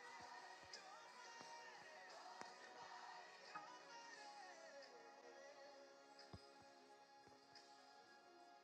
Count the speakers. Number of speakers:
0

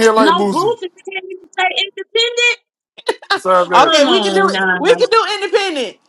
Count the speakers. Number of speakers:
3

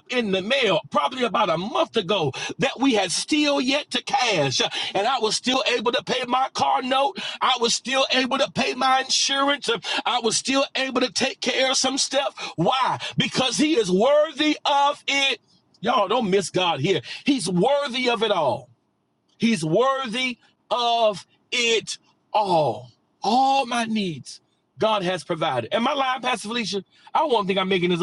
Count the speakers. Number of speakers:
1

